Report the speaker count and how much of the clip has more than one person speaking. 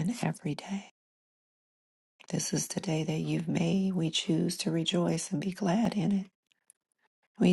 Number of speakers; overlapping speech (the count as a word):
one, no overlap